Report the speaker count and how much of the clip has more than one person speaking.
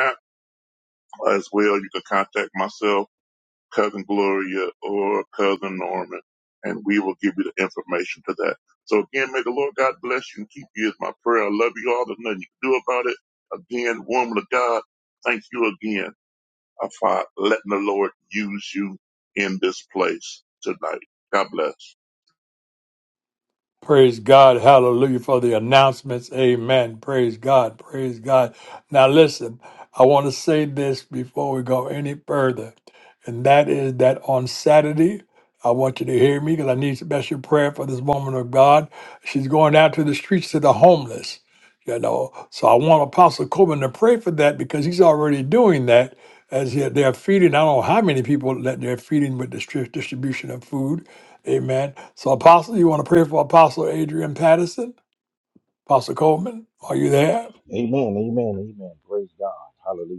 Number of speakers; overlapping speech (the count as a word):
three, no overlap